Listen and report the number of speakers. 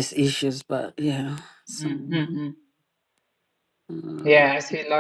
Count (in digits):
2